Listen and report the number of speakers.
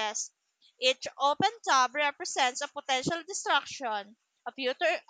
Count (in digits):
1